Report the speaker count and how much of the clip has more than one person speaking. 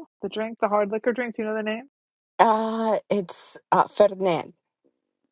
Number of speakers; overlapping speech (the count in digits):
2, no overlap